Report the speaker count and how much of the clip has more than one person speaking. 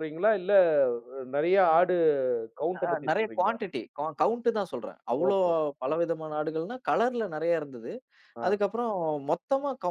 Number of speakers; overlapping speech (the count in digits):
2, about 13%